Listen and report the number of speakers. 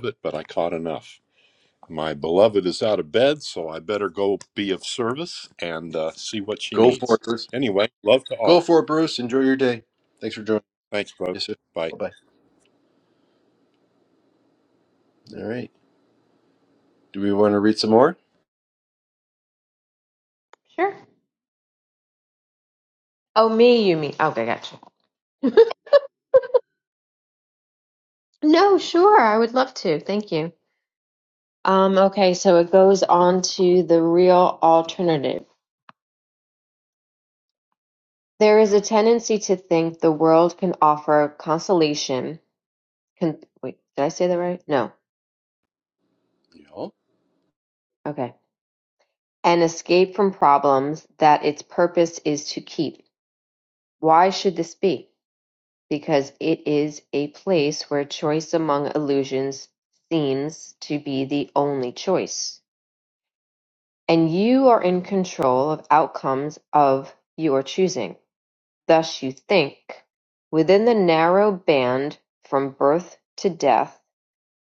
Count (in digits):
3